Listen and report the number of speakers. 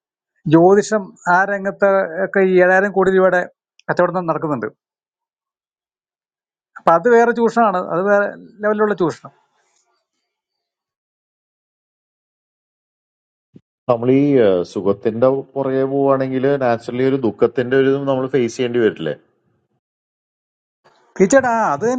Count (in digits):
2